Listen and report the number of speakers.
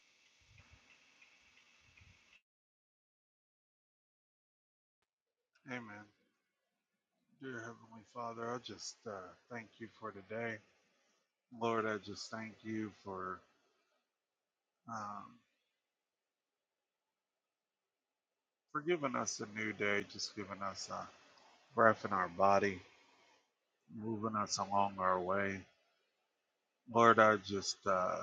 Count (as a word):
one